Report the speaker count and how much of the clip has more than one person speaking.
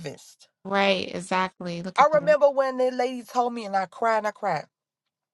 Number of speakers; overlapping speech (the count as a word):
two, about 7%